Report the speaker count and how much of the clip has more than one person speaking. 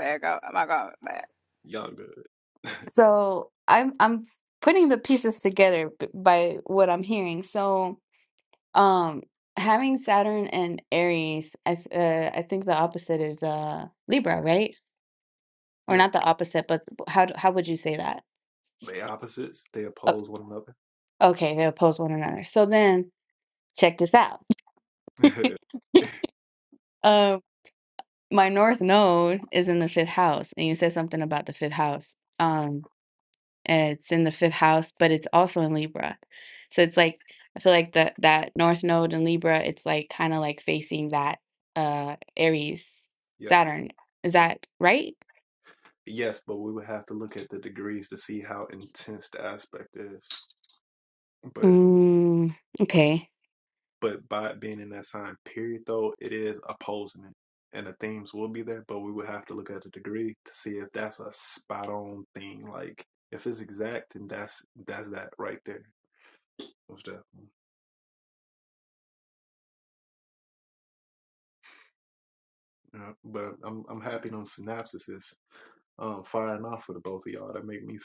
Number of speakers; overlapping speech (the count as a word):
three, about 1%